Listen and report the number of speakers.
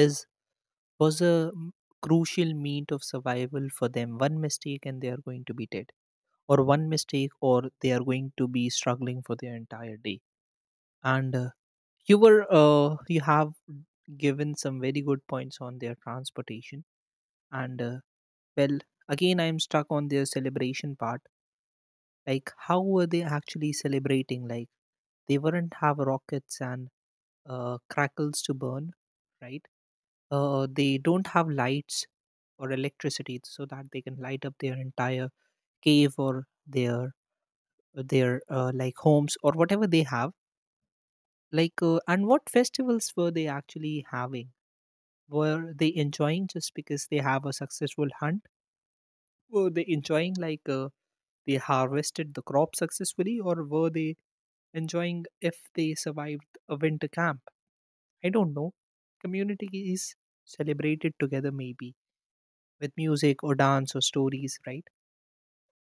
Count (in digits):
1